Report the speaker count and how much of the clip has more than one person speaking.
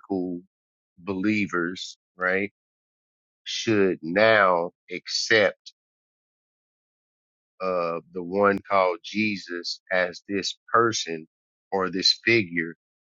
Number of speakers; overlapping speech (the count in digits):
1, no overlap